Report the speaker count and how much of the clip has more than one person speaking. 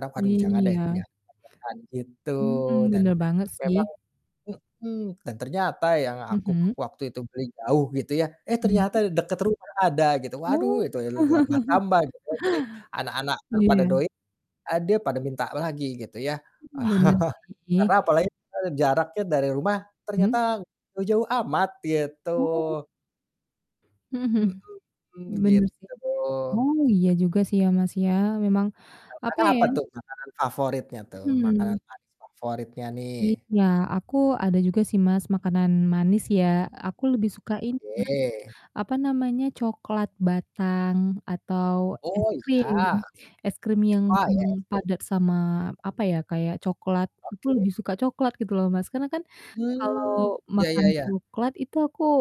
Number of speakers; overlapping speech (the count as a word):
two, about 16%